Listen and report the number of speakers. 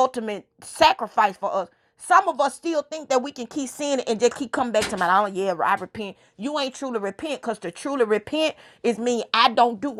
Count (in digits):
1